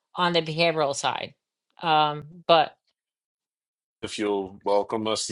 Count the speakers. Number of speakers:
two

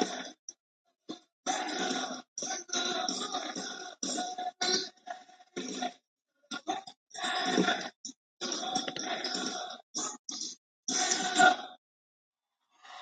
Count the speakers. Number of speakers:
zero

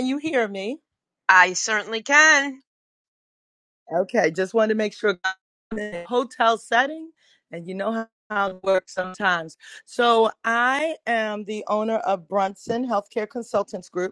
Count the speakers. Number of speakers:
two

